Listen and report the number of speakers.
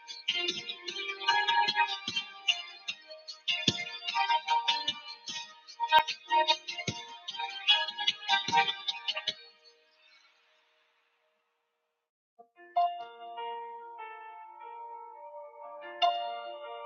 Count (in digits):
0